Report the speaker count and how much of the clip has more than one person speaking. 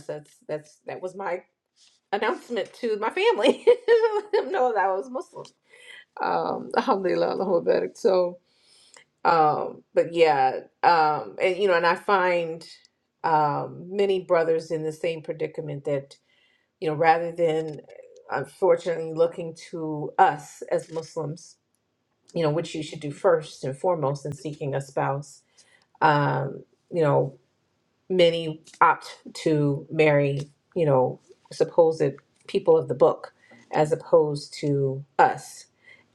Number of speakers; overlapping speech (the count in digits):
1, no overlap